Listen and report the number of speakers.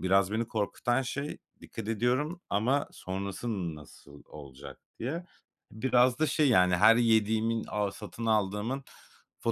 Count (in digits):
1